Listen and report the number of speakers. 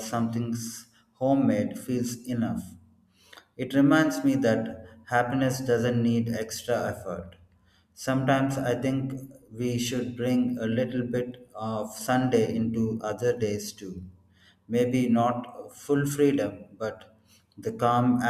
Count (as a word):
one